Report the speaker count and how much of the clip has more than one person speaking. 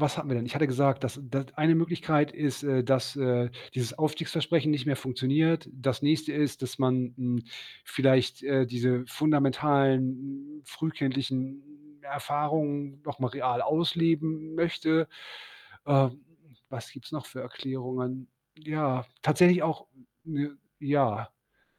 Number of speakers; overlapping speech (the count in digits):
1, no overlap